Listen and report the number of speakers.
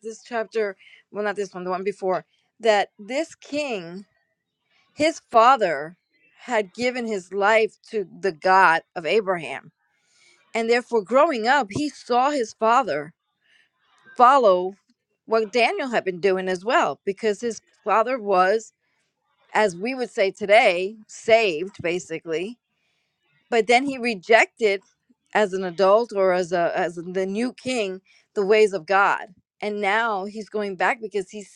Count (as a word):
one